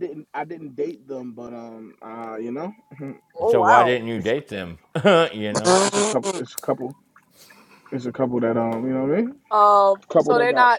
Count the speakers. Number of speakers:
three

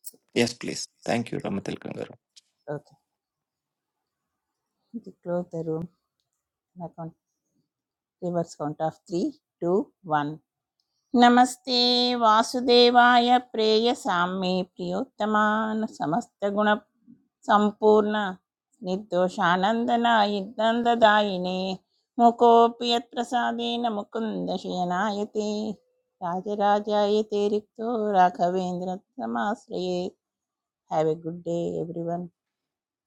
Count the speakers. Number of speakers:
two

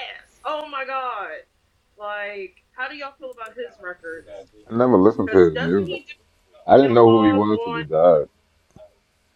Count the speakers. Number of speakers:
two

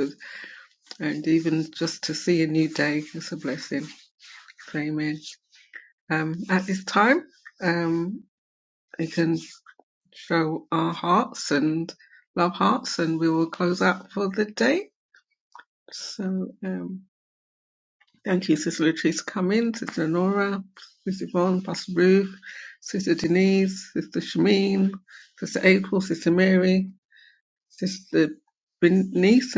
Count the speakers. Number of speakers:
one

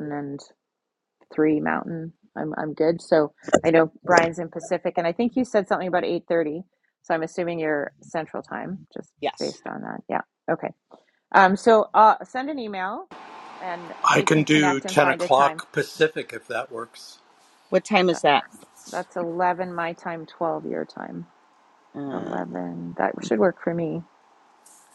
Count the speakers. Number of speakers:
three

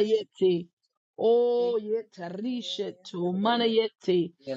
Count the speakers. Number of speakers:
one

